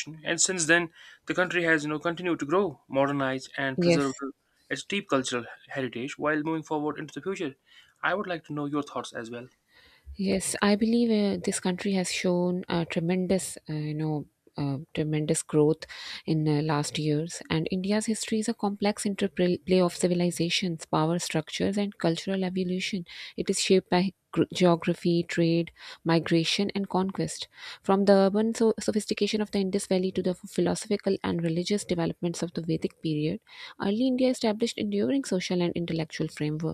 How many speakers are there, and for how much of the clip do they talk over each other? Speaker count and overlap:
two, about 1%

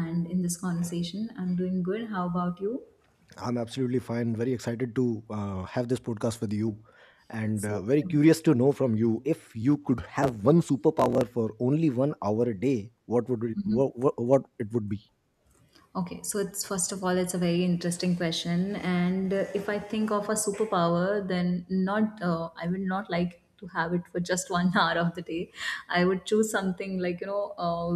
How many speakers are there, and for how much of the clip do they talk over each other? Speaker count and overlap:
two, under 1%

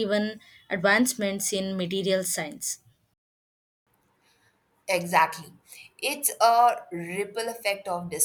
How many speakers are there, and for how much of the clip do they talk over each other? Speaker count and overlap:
two, no overlap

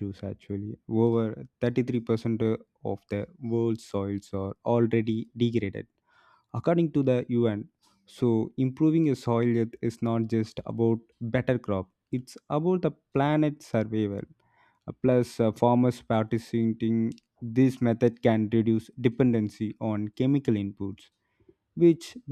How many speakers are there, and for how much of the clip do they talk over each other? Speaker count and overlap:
one, no overlap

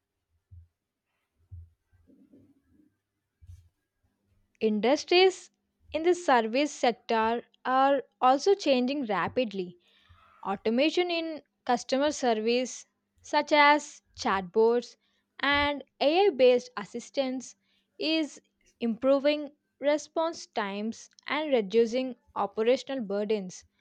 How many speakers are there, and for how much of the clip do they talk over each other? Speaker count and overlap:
one, no overlap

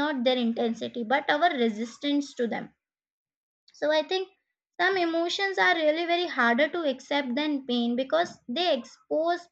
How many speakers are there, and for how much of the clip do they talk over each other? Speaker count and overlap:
one, no overlap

